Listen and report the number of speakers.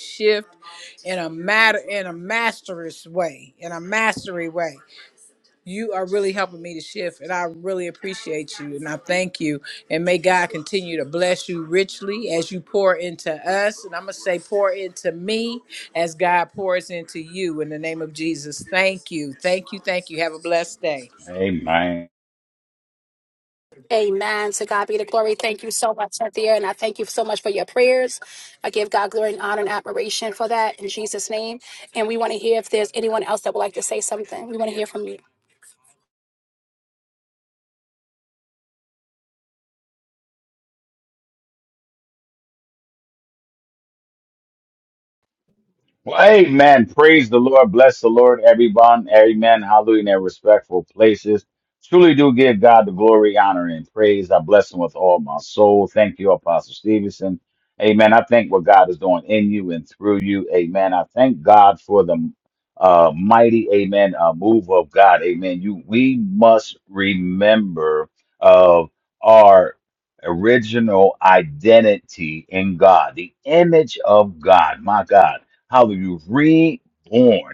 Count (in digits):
3